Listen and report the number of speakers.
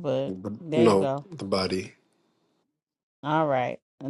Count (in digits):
2